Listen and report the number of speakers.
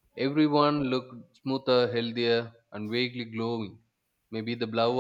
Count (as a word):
one